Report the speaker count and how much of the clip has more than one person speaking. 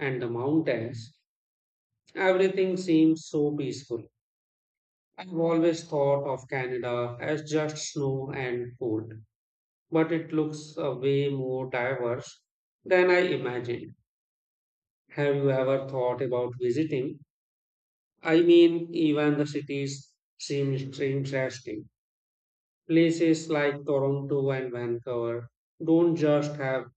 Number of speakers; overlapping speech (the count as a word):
one, no overlap